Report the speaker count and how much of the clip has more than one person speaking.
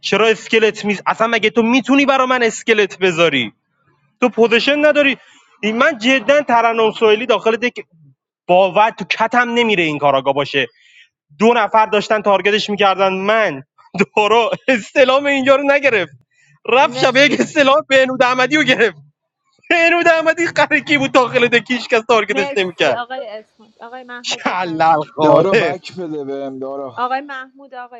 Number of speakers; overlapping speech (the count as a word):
three, about 9%